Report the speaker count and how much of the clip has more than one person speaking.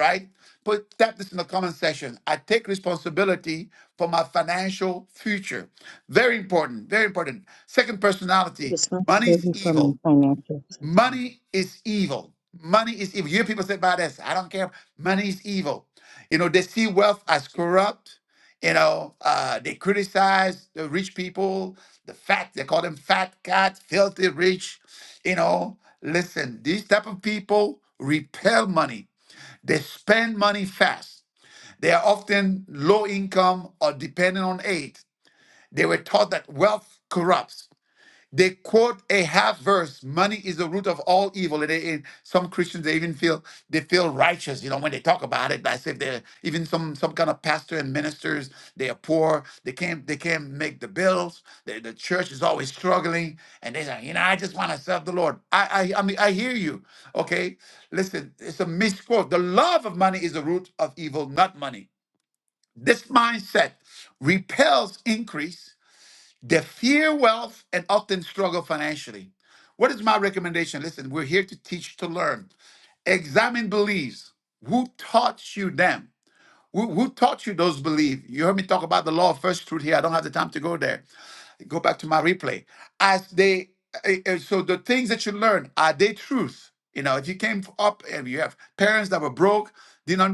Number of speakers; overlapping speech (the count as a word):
two, about 1%